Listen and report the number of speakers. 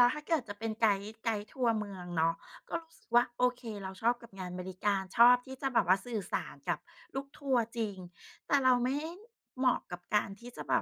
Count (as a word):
one